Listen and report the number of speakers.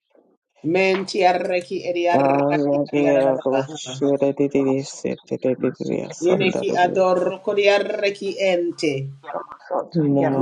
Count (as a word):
three